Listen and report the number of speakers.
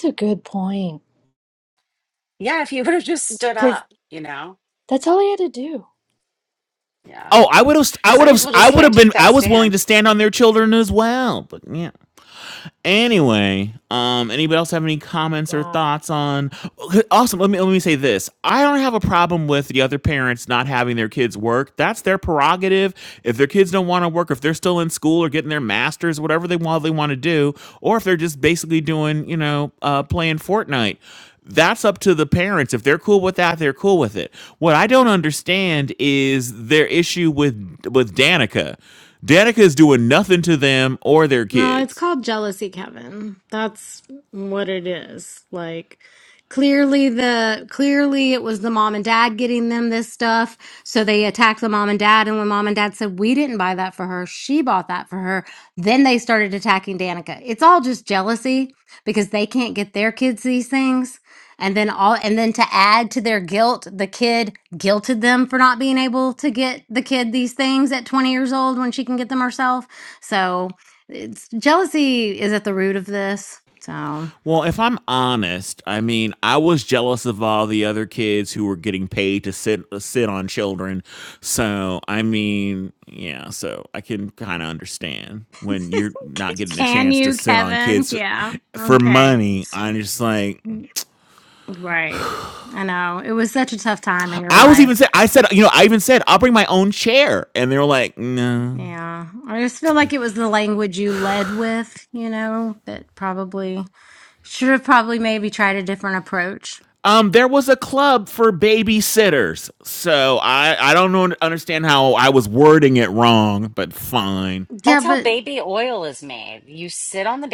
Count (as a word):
four